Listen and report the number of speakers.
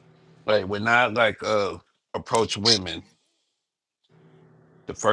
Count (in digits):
1